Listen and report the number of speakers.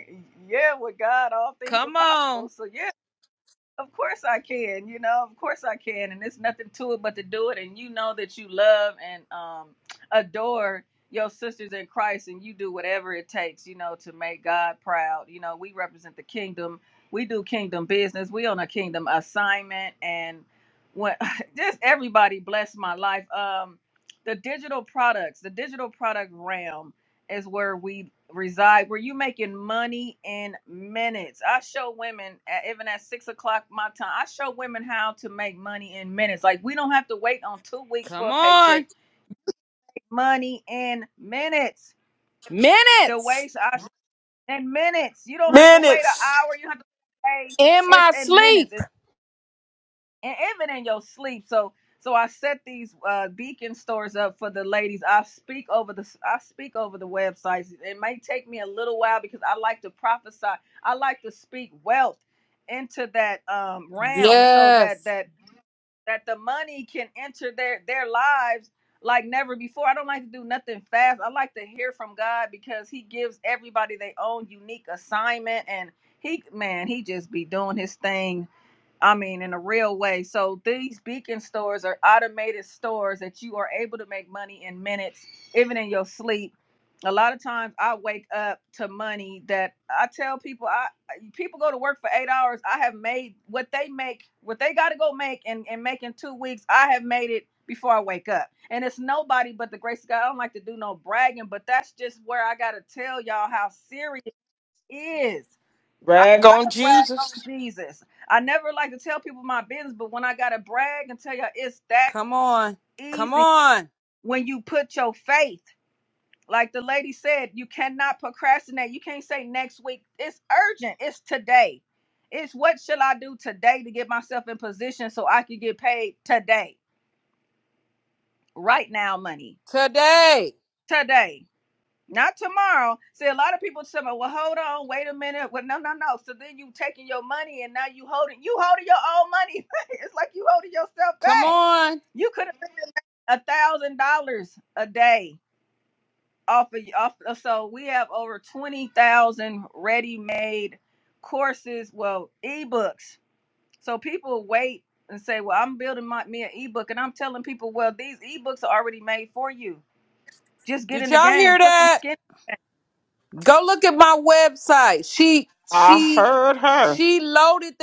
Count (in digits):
3